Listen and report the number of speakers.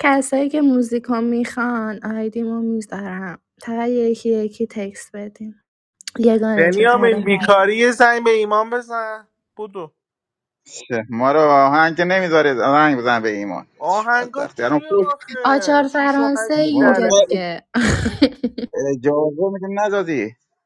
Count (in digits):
3